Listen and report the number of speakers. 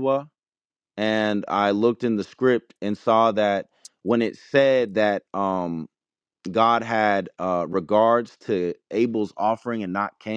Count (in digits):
1